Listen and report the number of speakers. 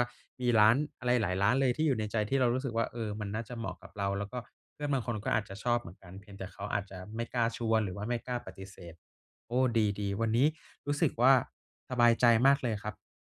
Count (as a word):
one